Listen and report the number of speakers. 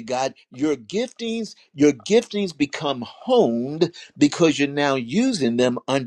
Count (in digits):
1